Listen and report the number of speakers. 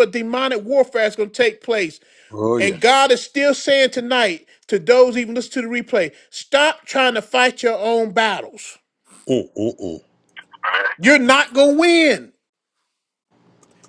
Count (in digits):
2